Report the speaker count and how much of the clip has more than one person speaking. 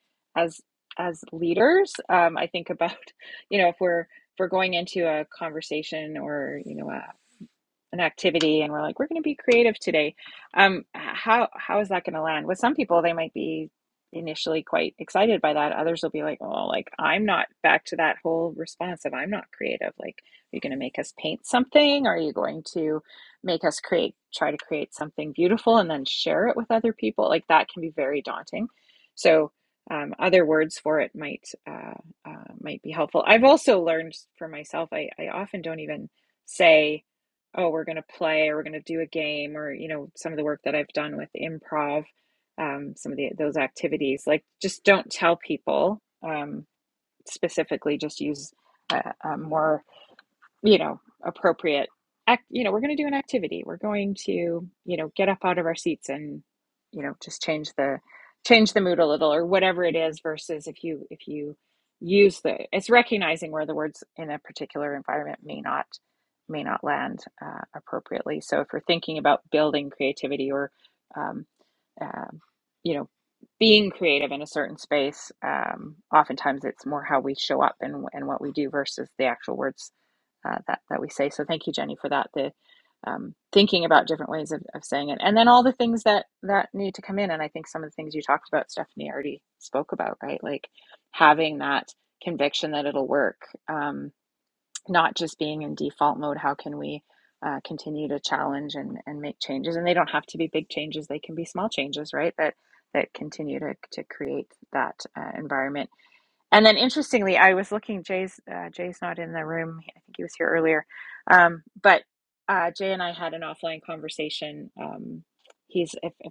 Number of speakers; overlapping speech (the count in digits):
1, no overlap